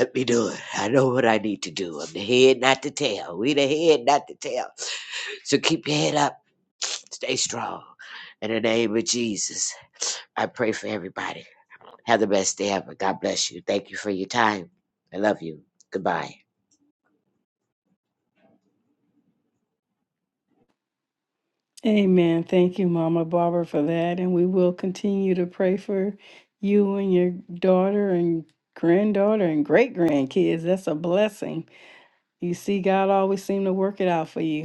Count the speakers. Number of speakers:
2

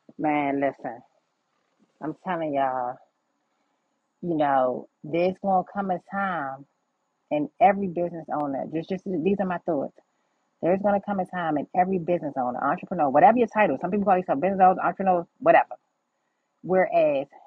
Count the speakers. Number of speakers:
1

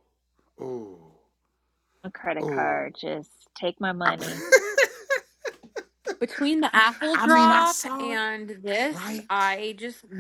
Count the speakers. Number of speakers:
3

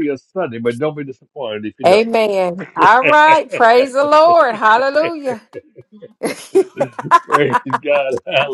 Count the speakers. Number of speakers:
2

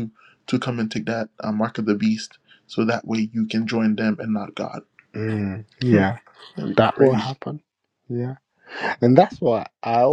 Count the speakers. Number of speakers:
2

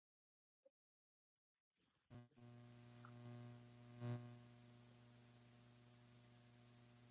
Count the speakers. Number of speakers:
0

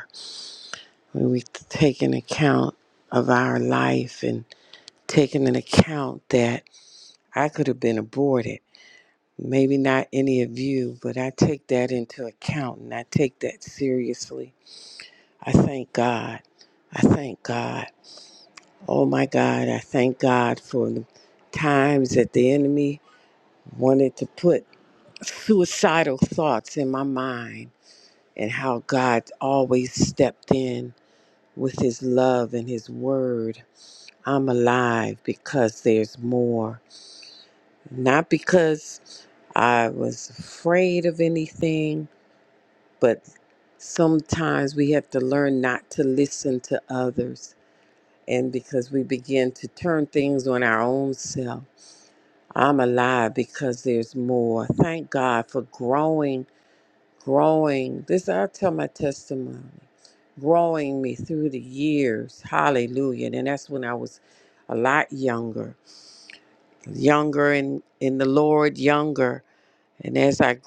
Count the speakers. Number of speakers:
1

